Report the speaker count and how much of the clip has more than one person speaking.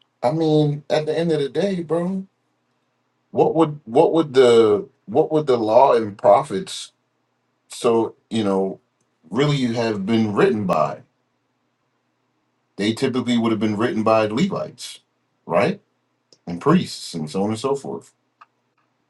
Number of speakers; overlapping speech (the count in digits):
1, no overlap